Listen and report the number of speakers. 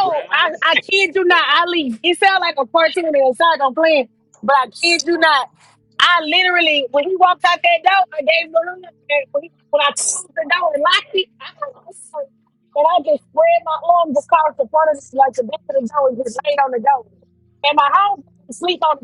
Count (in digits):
1